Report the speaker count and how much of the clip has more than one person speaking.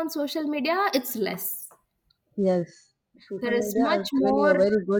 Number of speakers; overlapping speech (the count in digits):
2, about 24%